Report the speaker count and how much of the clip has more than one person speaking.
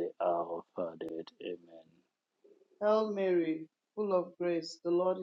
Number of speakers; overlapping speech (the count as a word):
two, no overlap